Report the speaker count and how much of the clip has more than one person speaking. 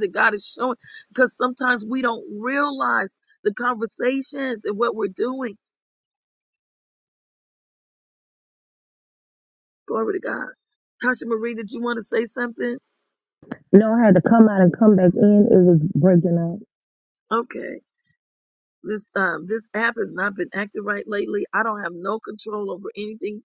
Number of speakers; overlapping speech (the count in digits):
2, no overlap